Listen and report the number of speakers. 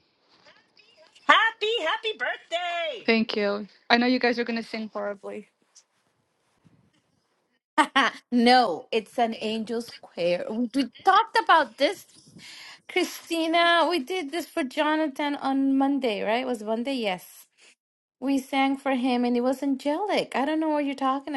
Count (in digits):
3